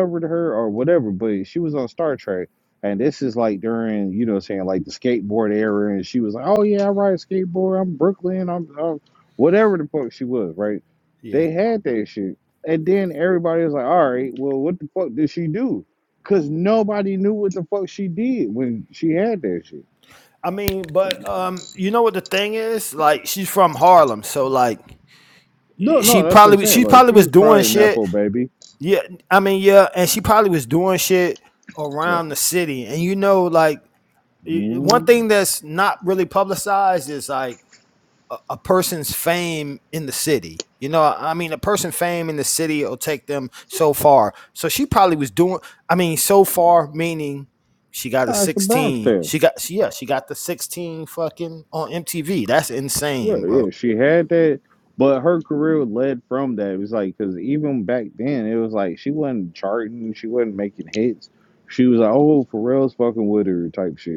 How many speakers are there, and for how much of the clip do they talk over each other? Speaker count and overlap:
two, about 7%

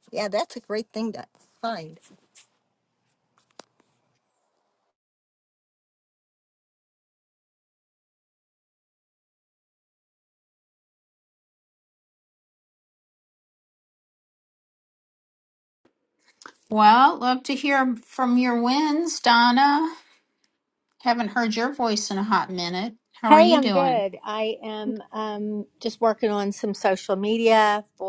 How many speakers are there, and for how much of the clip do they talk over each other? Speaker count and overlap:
three, about 3%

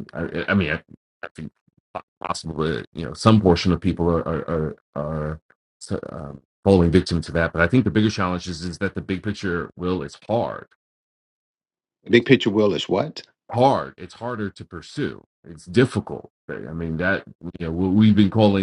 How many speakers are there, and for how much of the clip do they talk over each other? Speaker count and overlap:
two, about 1%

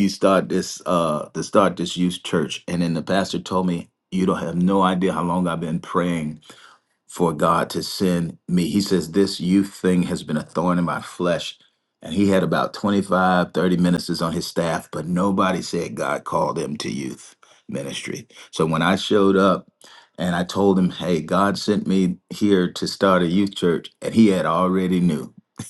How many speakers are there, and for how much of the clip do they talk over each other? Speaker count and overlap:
one, no overlap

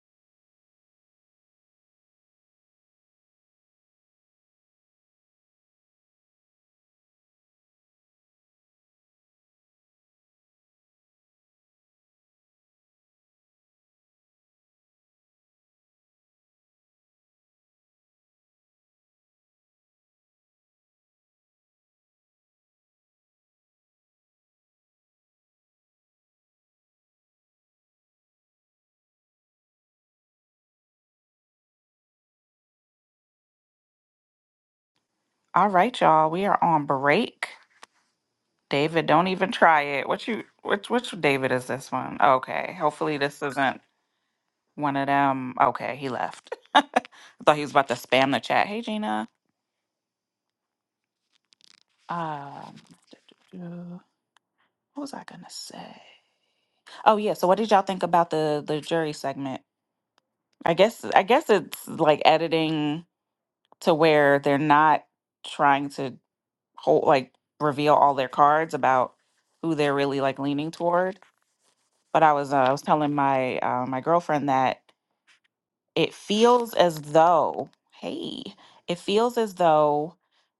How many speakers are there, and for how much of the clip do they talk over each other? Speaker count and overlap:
one, no overlap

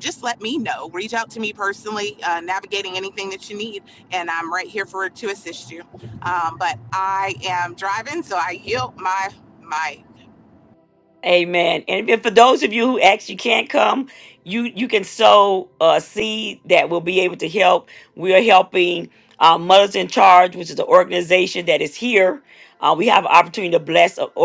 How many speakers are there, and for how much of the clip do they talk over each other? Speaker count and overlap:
two, no overlap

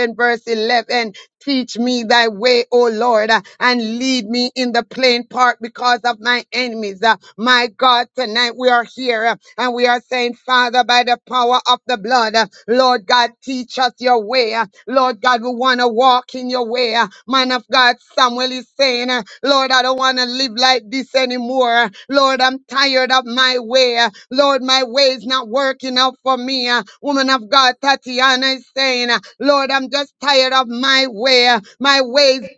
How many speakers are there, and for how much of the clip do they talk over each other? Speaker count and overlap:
one, no overlap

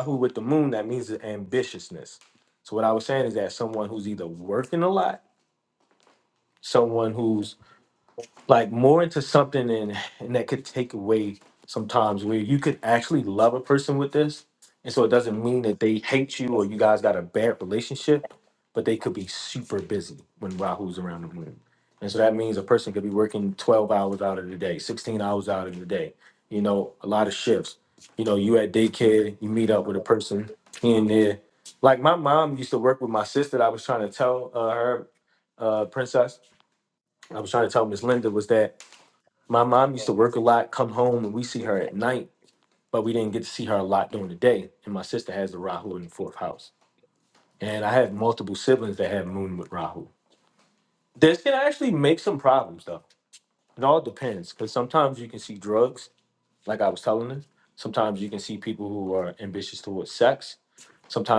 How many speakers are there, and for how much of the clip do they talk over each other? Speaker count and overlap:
one, no overlap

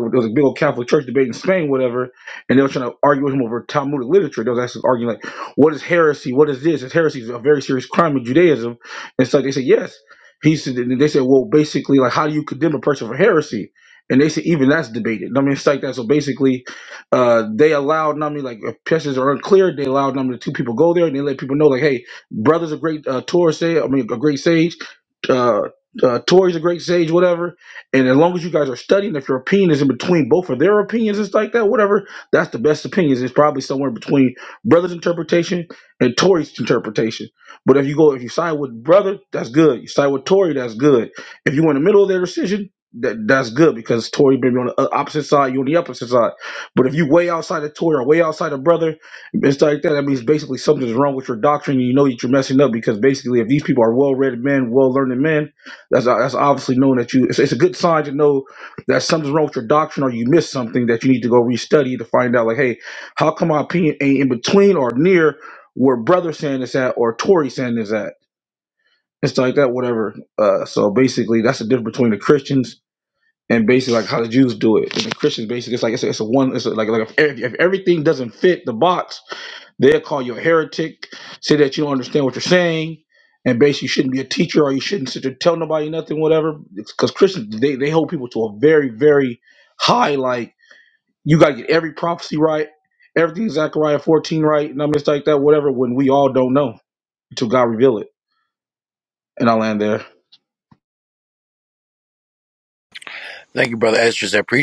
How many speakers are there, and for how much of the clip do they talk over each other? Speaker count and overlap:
two, no overlap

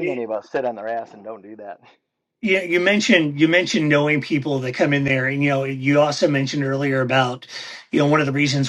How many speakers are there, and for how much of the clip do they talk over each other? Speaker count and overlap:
two, about 3%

